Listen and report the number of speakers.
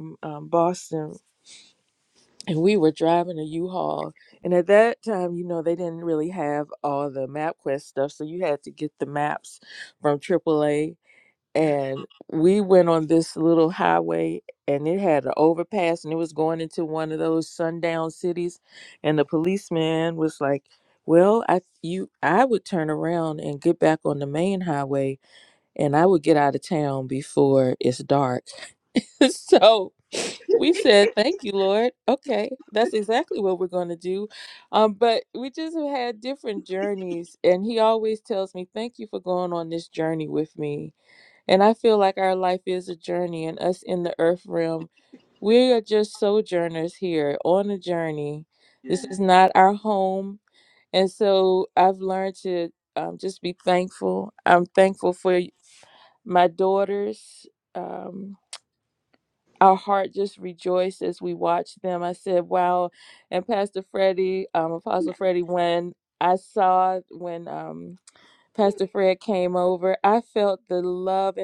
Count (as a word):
one